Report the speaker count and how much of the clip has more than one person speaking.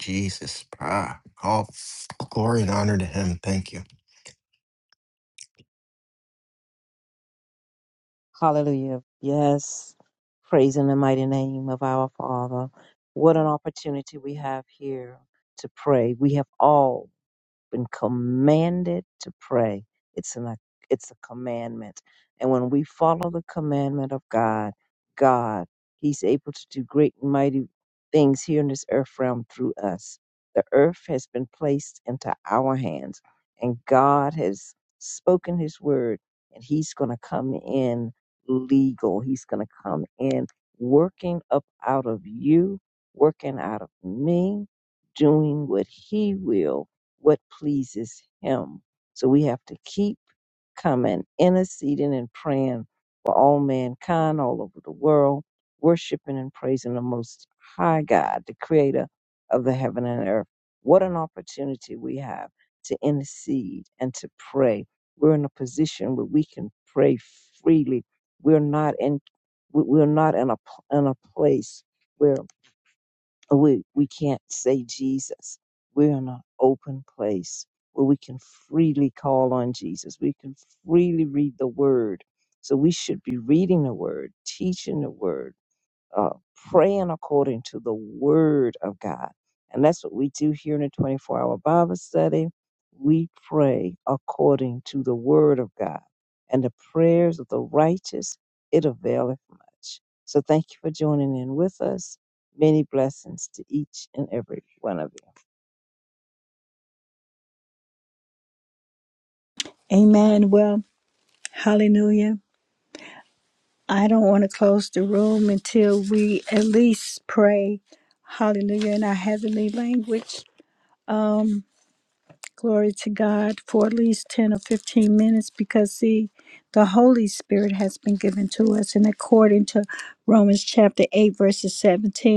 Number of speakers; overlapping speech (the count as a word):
three, no overlap